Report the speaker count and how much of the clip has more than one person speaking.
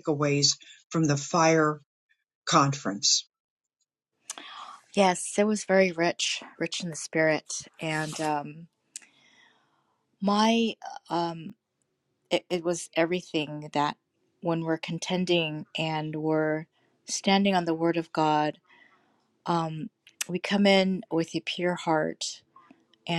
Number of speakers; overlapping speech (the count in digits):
2, no overlap